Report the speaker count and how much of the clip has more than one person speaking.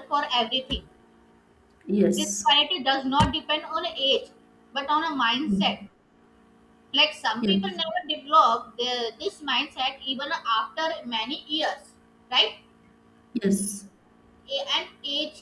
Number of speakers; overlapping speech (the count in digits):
2, about 7%